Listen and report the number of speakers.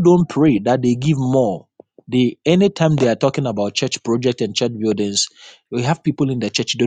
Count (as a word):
one